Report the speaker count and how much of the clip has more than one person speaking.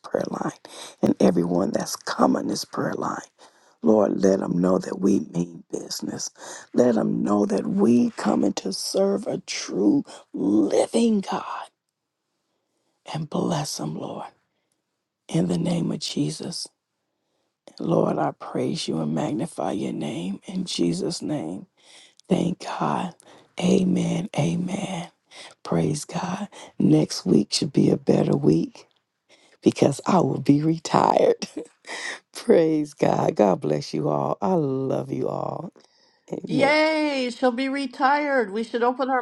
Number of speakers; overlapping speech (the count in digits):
2, about 1%